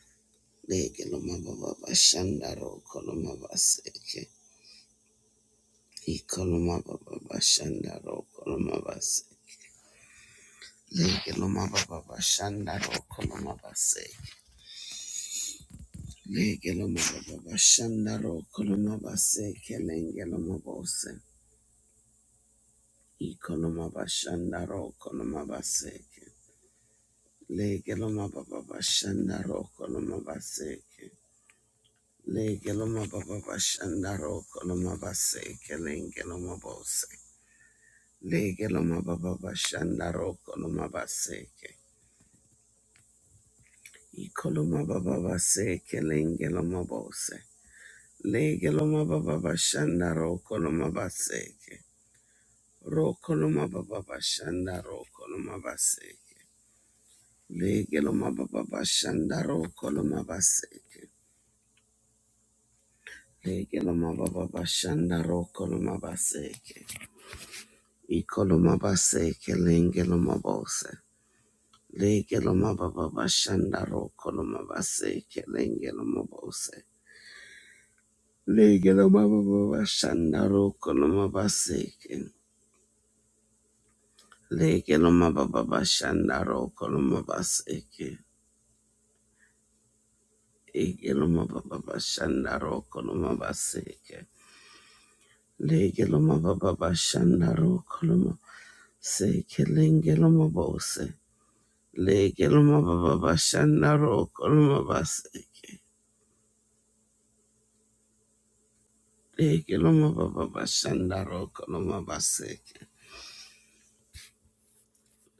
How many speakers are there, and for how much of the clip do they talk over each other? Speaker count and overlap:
one, no overlap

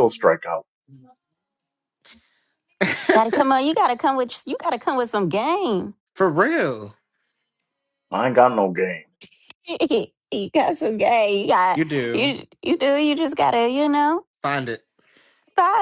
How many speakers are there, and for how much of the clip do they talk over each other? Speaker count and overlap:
three, about 1%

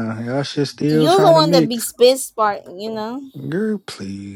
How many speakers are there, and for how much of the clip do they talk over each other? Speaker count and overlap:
two, about 22%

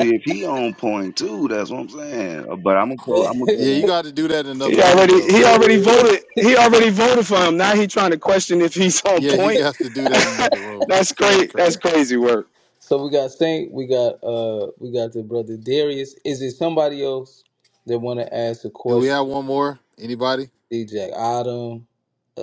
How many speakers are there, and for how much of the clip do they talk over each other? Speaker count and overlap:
four, about 16%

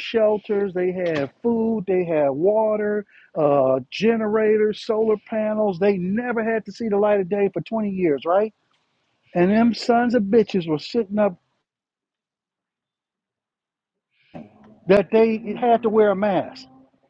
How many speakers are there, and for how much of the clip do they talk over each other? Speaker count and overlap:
one, no overlap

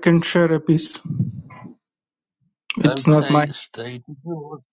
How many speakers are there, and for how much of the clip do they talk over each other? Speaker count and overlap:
two, about 14%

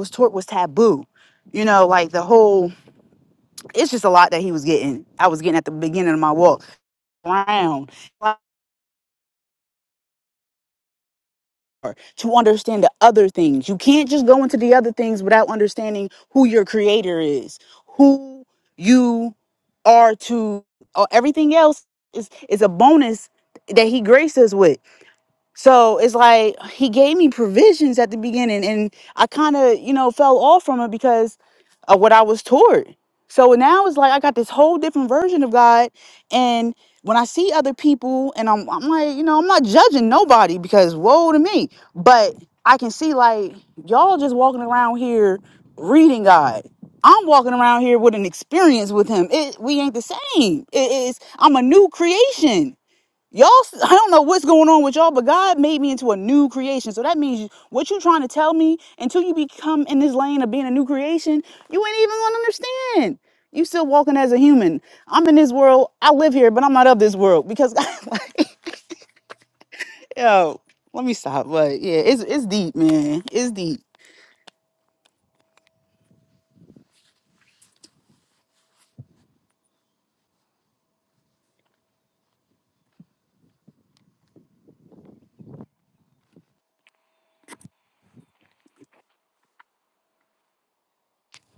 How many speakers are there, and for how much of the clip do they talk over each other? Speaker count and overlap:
one, no overlap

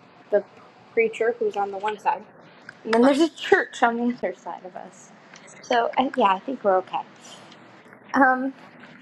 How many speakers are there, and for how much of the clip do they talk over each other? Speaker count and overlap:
one, no overlap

